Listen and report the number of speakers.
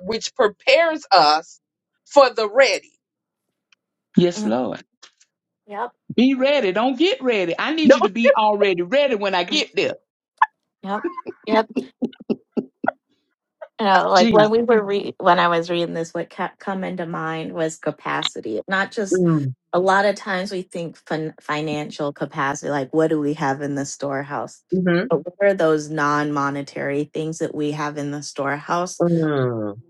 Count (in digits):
3